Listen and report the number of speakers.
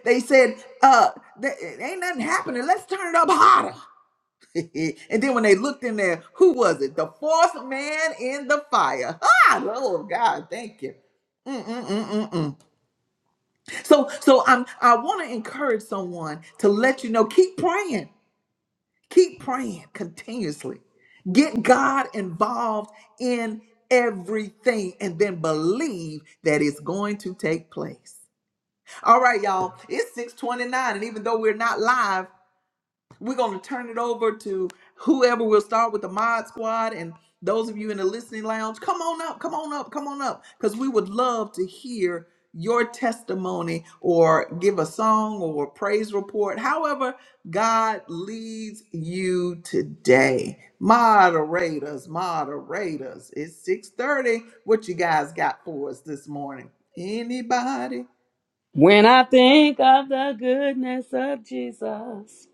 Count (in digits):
2